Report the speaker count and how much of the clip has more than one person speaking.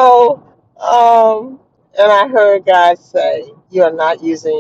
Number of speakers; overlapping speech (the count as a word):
one, no overlap